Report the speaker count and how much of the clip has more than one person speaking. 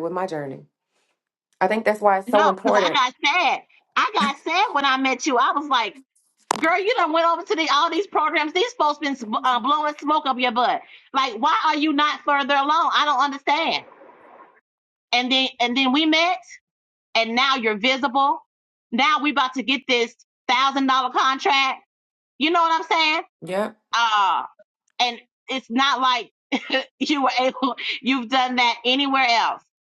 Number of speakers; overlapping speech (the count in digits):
2, about 2%